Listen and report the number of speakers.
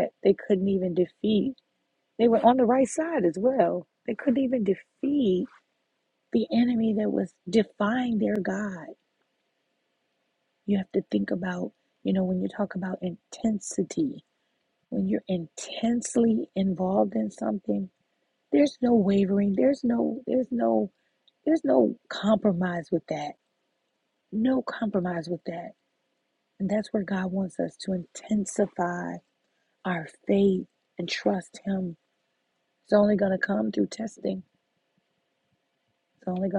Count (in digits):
1